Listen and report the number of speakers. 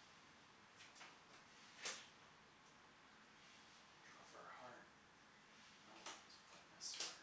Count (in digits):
1